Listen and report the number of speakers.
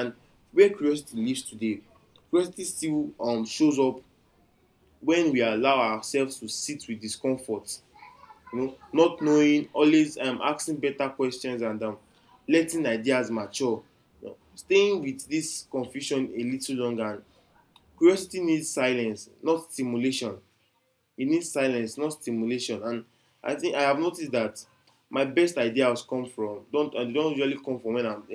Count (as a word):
one